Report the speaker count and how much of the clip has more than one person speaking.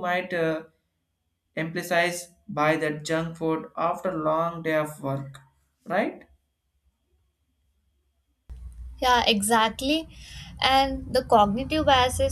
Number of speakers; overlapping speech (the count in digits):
2, no overlap